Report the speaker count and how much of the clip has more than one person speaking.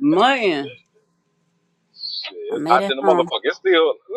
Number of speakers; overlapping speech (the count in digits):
2, about 19%